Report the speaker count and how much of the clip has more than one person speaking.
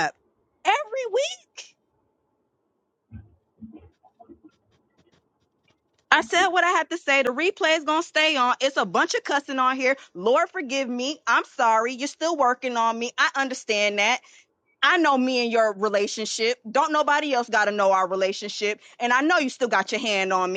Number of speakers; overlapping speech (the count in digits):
1, no overlap